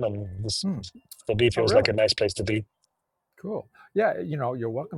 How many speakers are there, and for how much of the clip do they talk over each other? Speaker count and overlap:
2, about 8%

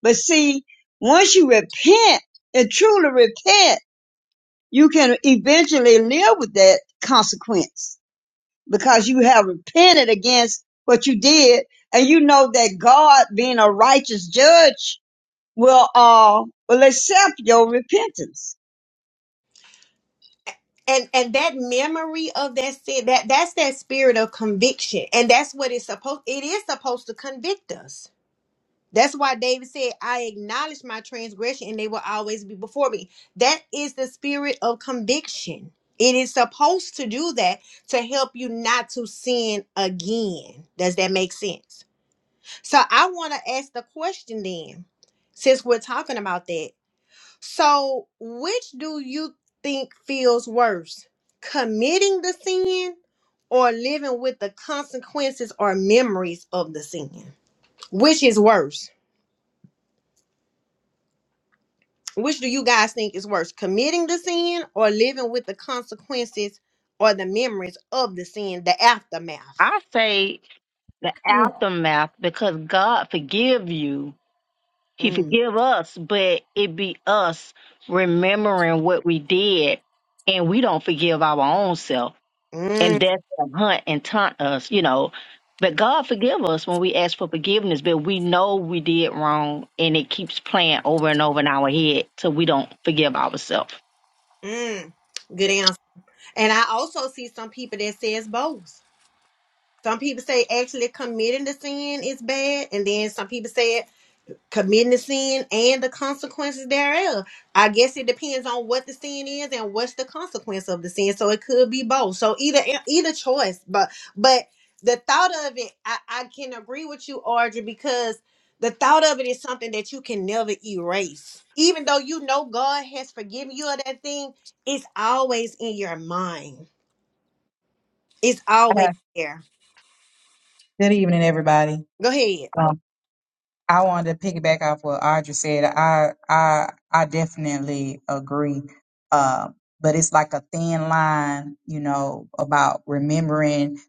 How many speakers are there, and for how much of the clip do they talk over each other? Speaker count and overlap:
4, under 1%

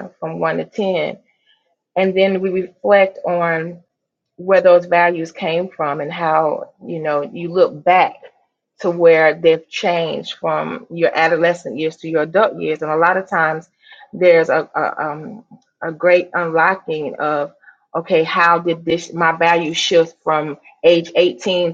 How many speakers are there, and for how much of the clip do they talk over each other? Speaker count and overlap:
1, no overlap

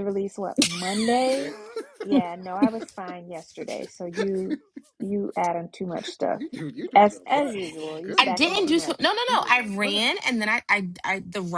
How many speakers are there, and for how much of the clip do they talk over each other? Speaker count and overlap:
3, about 27%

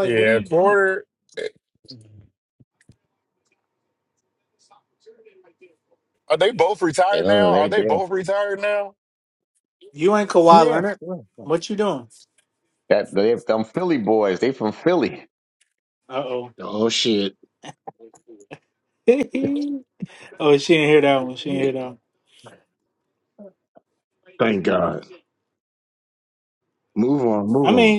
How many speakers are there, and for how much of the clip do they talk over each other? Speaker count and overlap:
4, about 8%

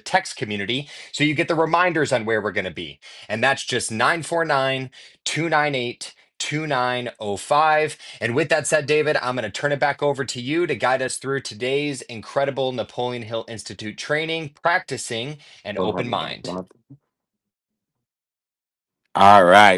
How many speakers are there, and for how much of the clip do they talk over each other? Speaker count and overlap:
2, about 4%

